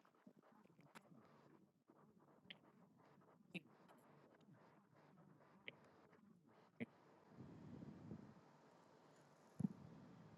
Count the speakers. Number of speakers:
0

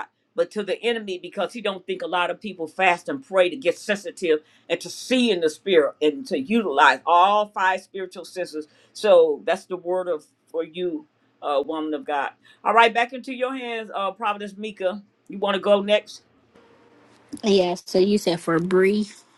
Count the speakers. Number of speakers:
2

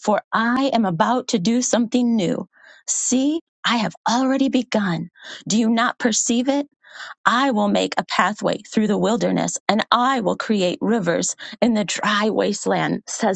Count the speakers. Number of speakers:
1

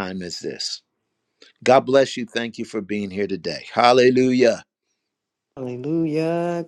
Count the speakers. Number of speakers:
2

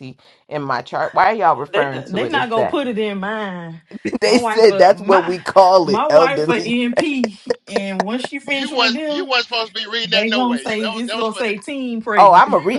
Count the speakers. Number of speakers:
3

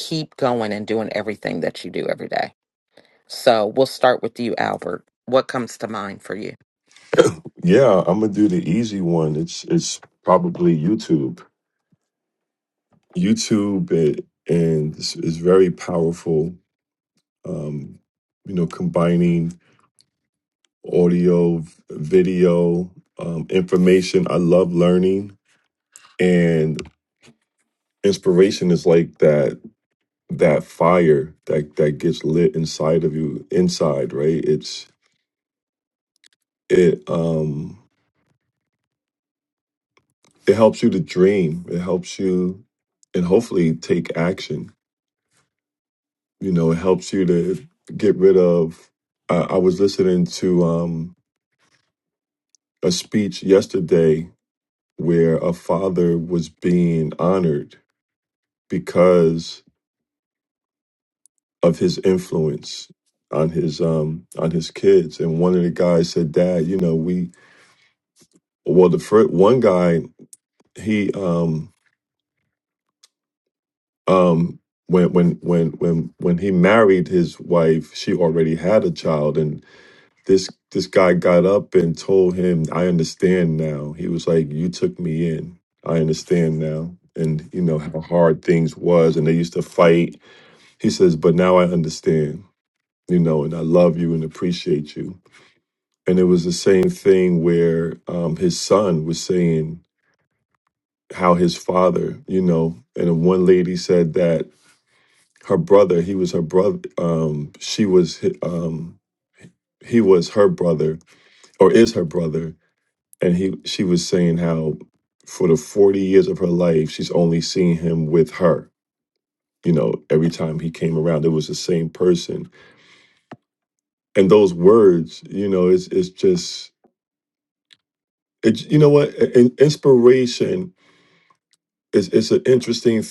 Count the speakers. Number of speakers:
2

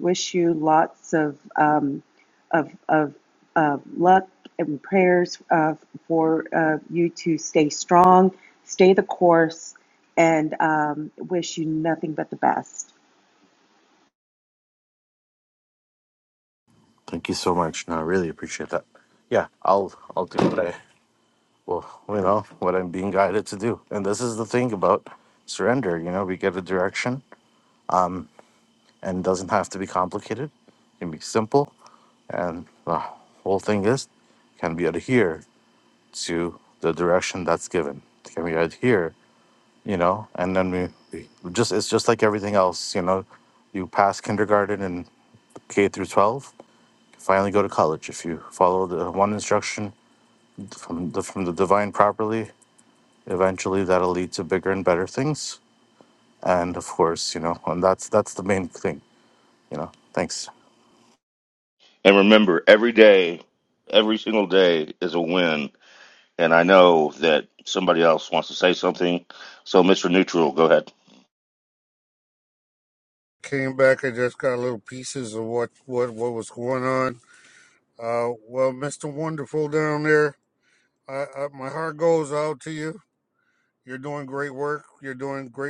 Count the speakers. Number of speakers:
4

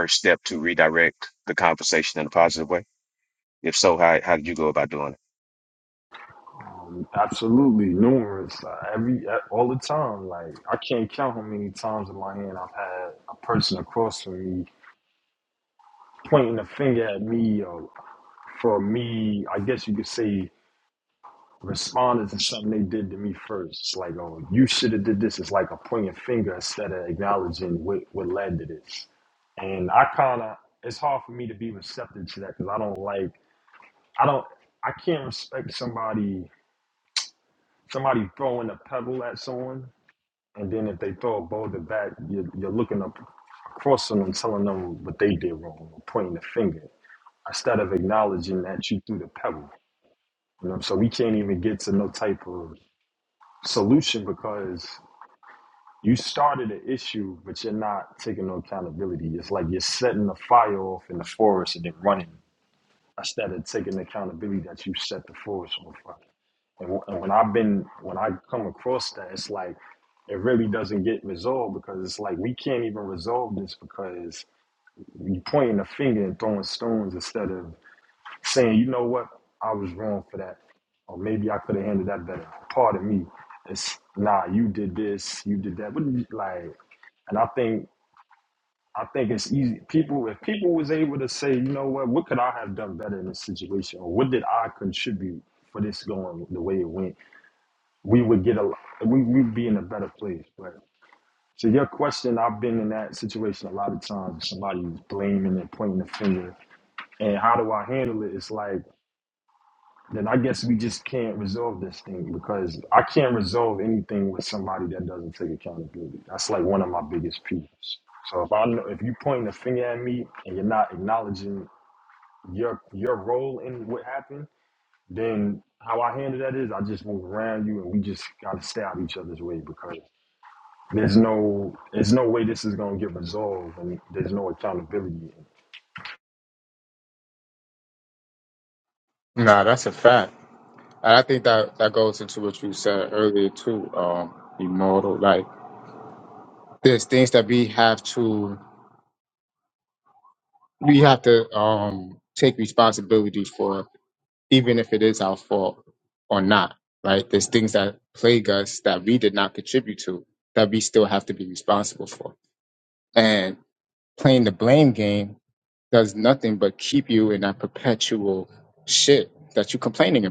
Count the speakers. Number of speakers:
3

